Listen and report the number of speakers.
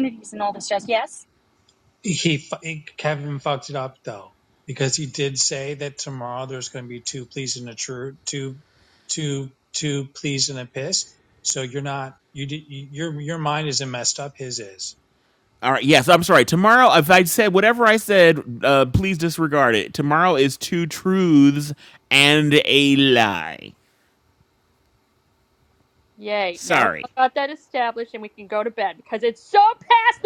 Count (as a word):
four